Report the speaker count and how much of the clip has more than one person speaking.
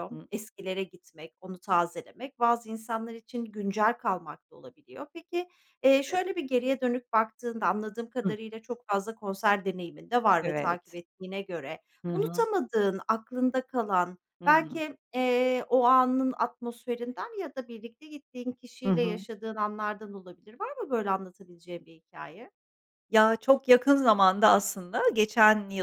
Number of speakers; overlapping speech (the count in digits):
2, about 7%